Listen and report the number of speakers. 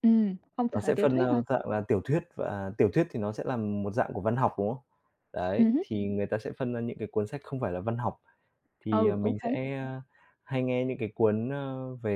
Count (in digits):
2